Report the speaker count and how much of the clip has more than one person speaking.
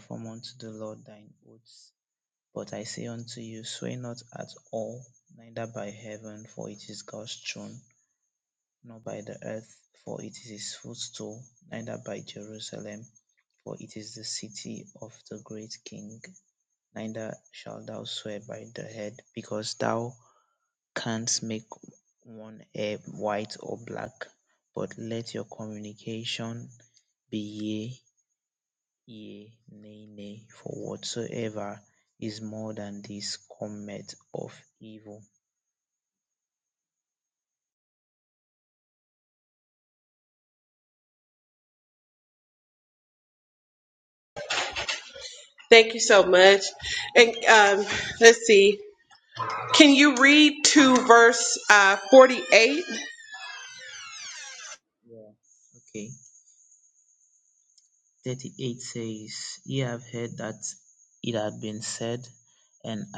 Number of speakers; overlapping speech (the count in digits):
2, no overlap